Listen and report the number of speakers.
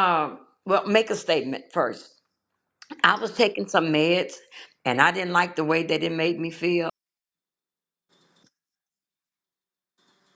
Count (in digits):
1